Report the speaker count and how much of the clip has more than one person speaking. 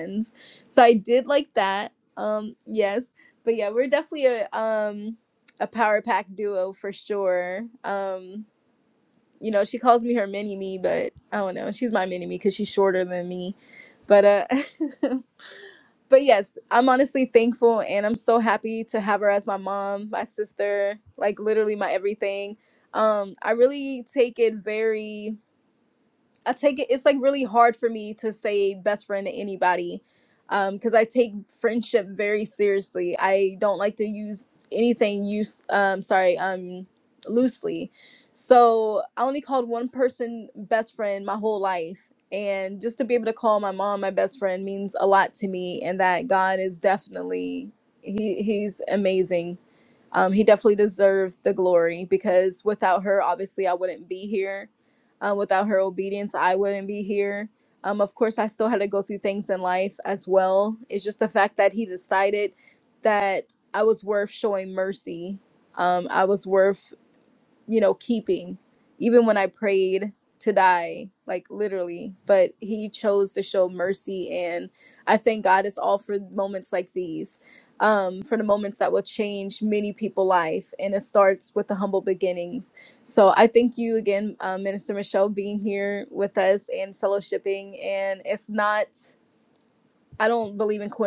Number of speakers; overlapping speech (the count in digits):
1, no overlap